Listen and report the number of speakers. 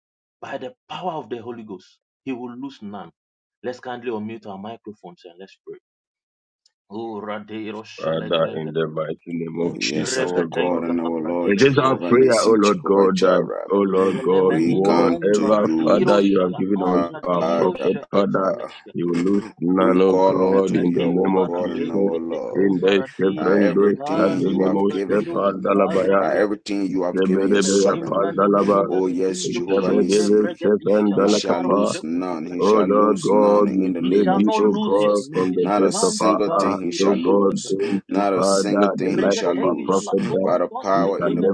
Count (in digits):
3